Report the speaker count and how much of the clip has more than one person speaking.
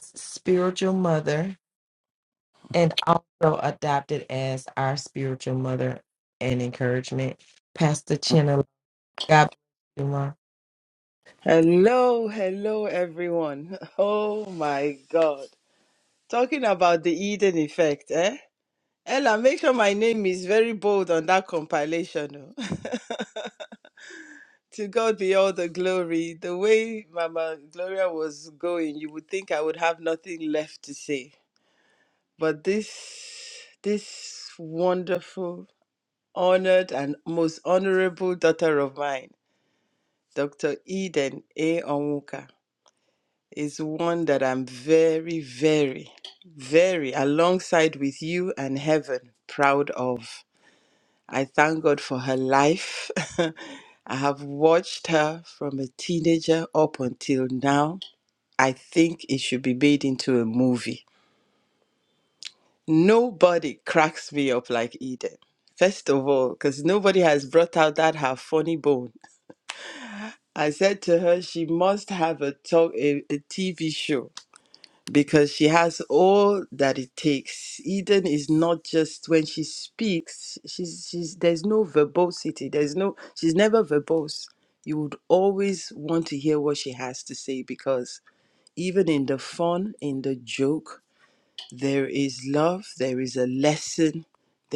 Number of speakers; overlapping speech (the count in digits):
2, no overlap